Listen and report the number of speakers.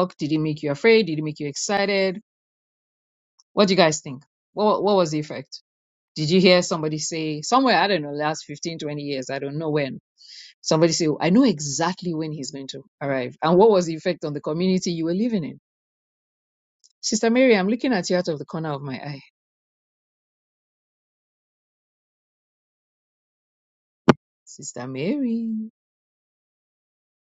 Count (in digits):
1